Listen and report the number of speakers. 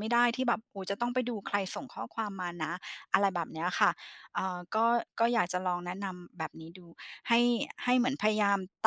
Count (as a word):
one